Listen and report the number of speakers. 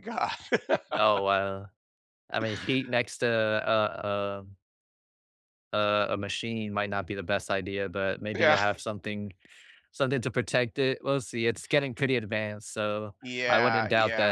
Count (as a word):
two